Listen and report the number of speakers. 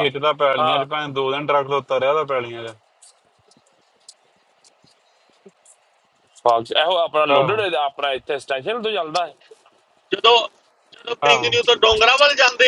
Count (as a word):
three